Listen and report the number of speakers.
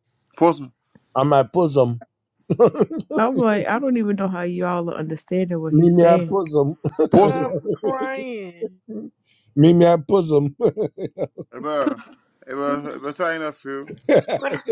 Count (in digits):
4